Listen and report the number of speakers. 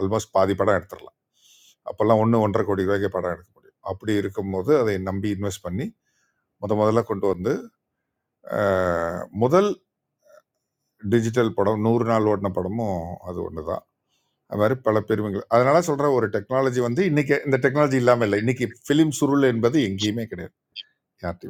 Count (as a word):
one